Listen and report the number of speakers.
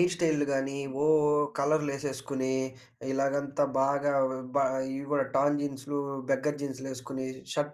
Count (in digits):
1